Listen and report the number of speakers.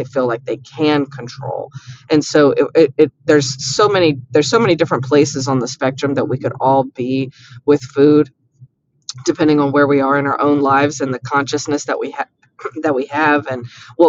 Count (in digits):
1